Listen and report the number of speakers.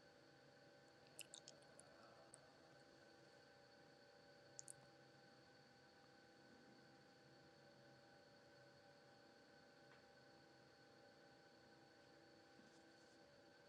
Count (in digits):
0